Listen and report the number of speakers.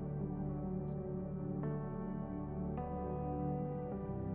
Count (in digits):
0